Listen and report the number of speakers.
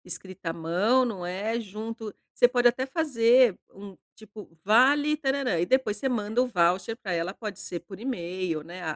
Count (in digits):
1